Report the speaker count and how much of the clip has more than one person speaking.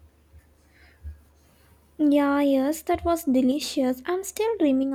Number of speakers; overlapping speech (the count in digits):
1, no overlap